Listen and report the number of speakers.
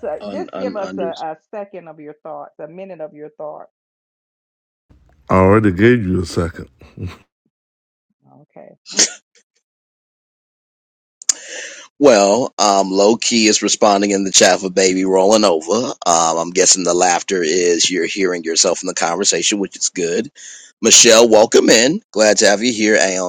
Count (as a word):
three